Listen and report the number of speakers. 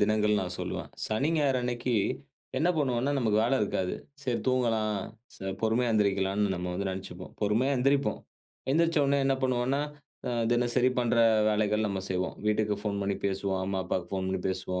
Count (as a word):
one